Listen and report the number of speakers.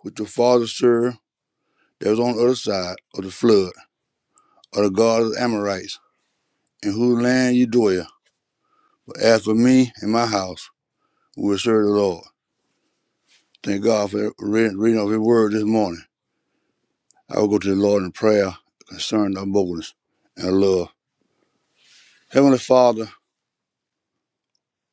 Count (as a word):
one